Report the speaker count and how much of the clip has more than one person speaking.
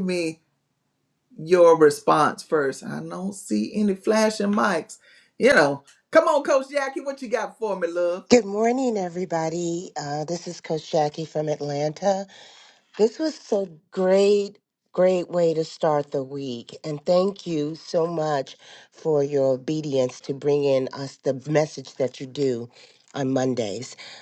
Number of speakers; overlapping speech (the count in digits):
2, no overlap